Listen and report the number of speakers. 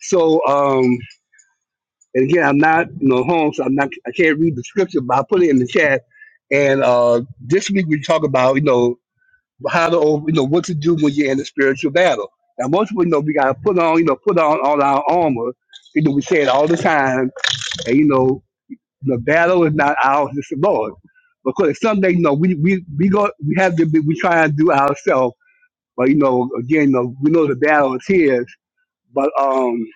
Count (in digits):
1